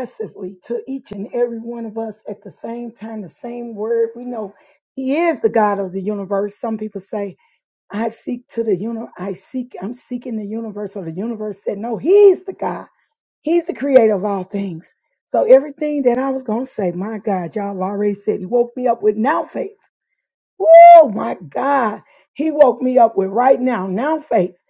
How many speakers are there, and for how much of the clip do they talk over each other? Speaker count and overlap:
1, no overlap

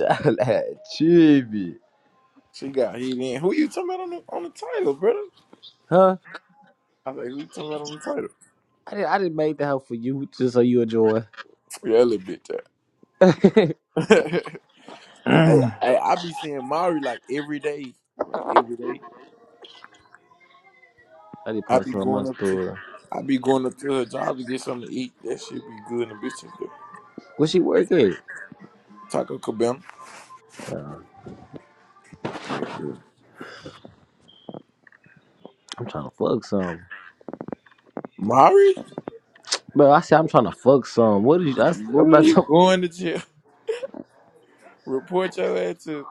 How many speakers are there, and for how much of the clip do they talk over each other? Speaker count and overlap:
3, about 3%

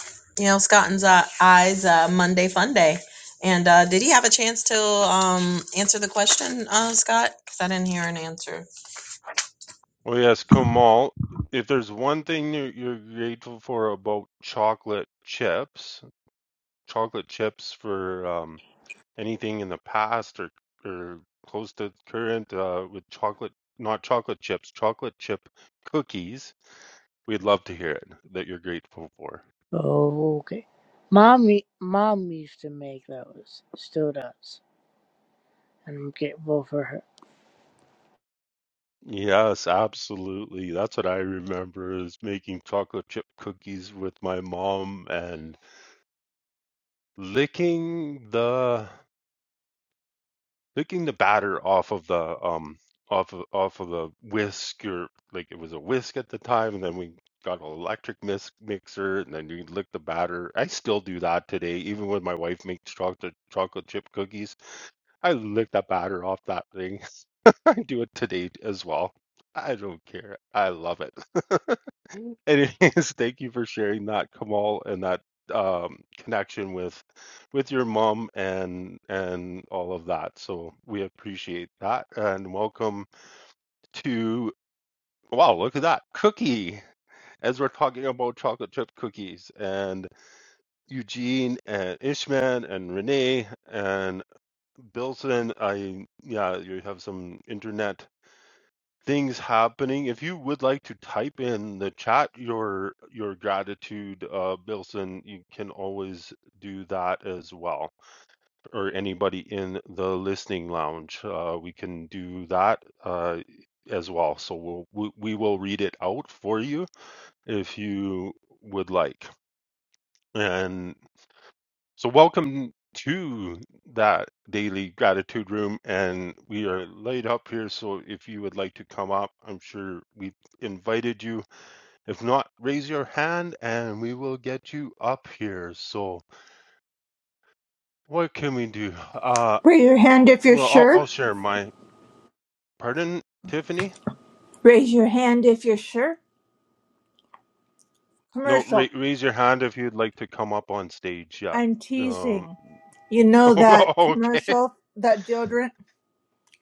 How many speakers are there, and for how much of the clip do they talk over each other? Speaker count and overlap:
4, about 2%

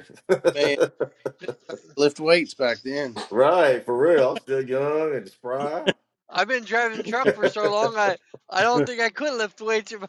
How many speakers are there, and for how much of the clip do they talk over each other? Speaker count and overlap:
3, no overlap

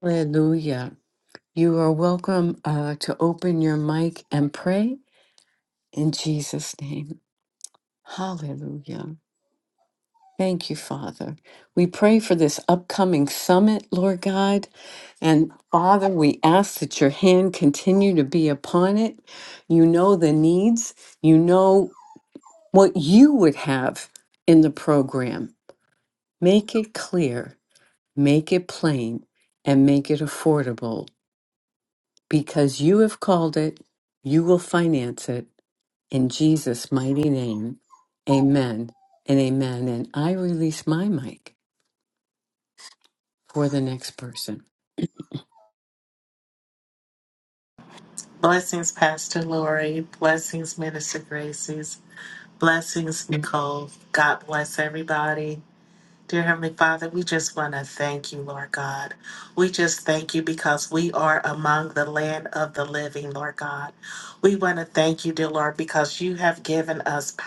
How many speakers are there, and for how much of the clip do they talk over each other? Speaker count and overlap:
2, no overlap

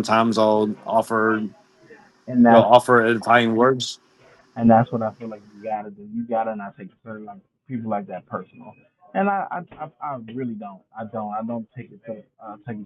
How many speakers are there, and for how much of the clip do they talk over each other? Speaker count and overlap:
2, about 2%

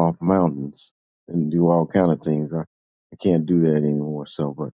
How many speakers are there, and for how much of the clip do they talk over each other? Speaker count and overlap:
1, no overlap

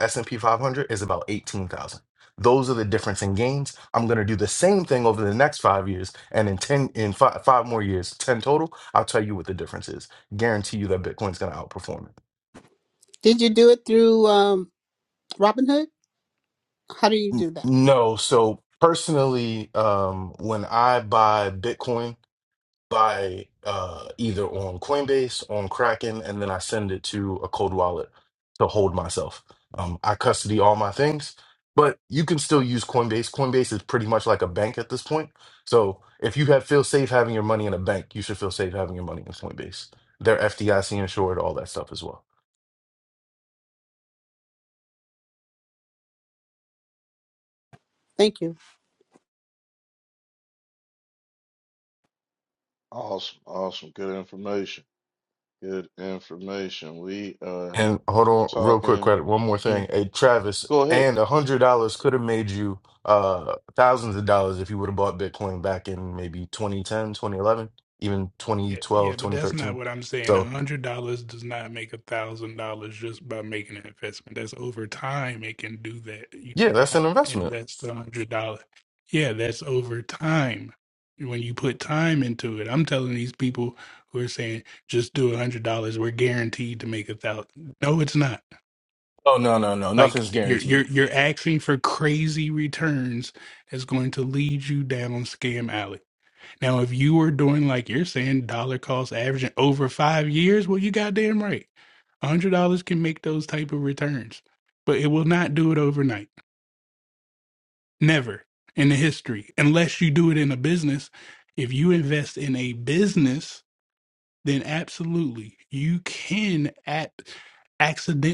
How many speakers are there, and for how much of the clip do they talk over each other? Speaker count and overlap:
4, about 4%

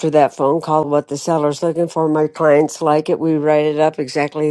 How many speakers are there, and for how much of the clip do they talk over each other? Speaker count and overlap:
1, no overlap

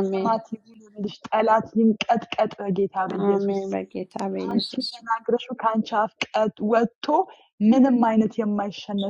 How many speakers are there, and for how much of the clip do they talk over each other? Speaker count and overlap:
2, about 14%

